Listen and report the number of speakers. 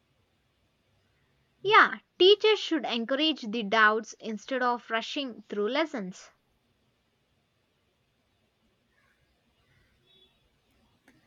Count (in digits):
1